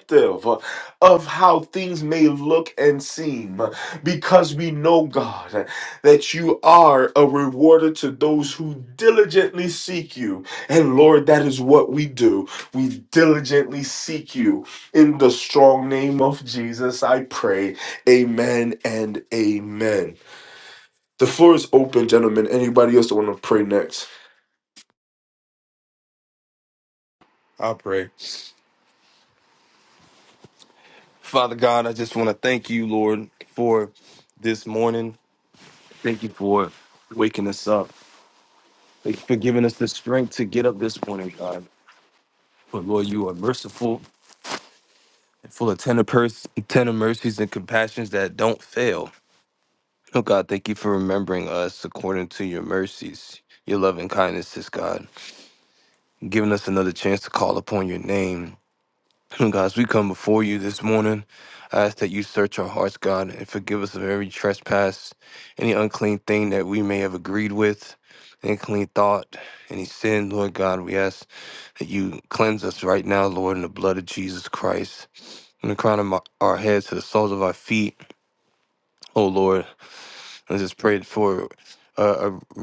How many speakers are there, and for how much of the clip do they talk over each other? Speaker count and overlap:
2, no overlap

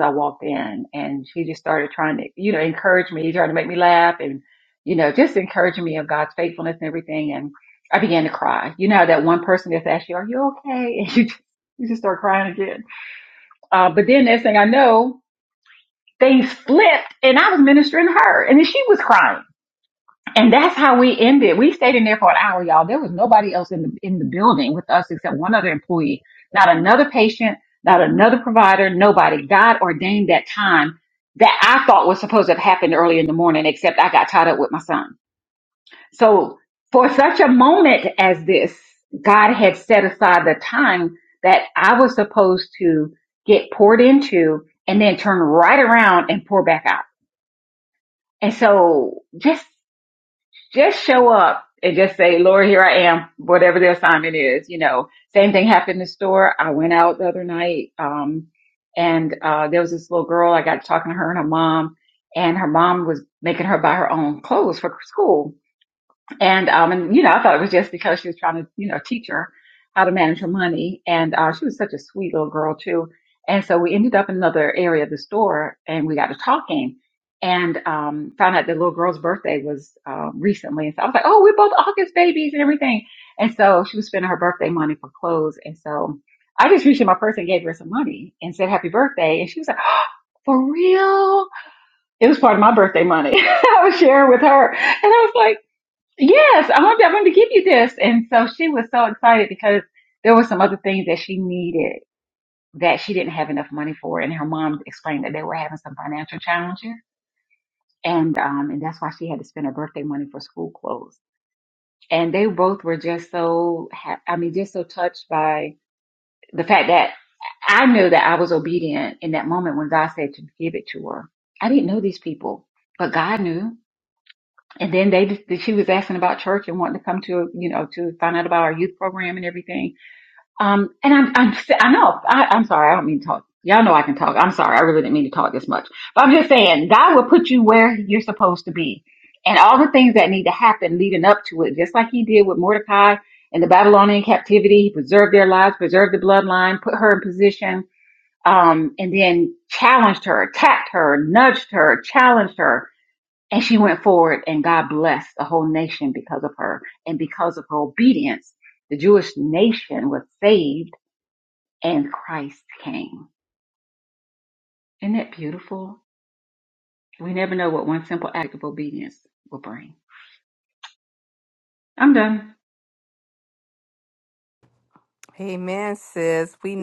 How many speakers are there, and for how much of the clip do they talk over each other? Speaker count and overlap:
2, no overlap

